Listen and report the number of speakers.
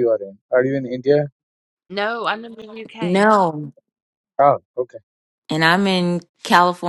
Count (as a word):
three